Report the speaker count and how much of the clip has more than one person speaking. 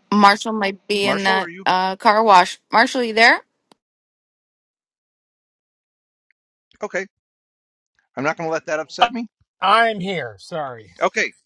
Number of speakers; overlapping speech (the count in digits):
3, about 5%